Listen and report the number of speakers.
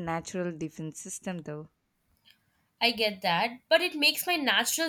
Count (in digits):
2